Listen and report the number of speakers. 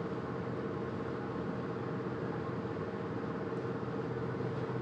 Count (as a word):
zero